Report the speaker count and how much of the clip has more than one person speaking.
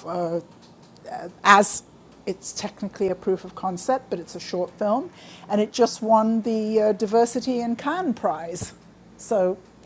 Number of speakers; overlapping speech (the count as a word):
one, no overlap